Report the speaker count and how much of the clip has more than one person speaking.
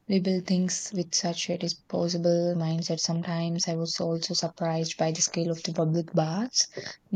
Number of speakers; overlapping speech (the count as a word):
one, no overlap